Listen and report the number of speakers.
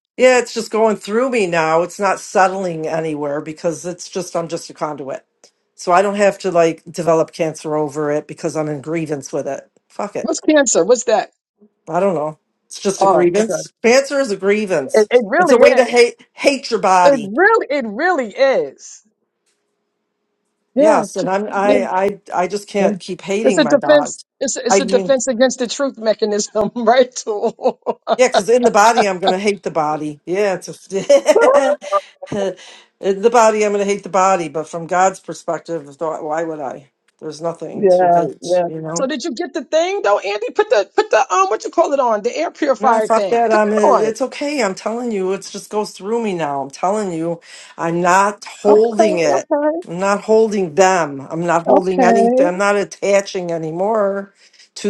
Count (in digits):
2